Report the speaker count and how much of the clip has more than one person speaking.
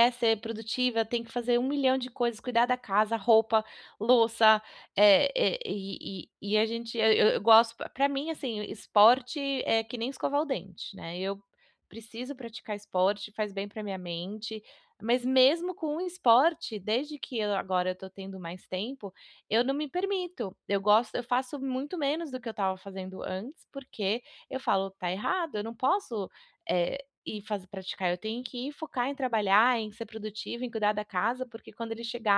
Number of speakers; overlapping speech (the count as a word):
one, no overlap